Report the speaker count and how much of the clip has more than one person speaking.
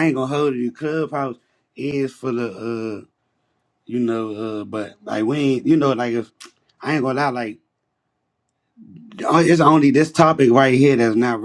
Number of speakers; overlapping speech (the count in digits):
1, no overlap